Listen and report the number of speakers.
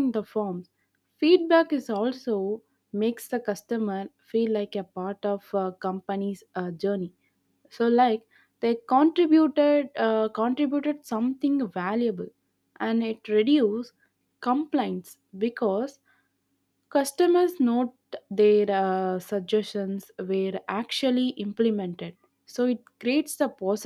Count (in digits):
1